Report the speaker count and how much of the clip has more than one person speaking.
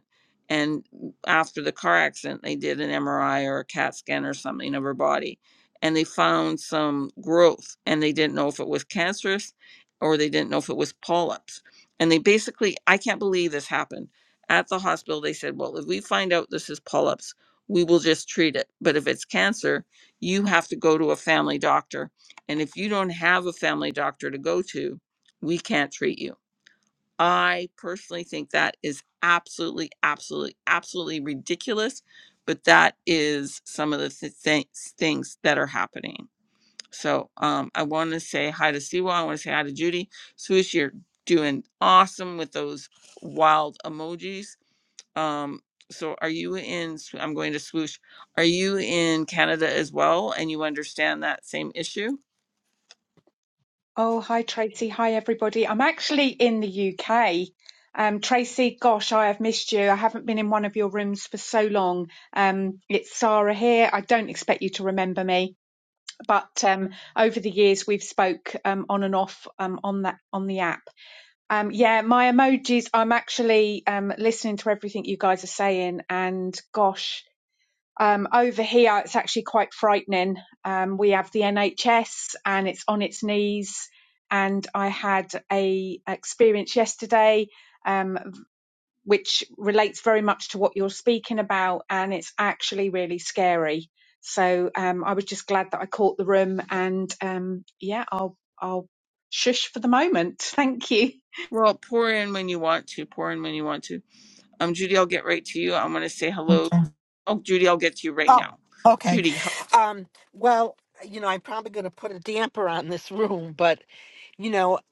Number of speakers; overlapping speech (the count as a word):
three, about 1%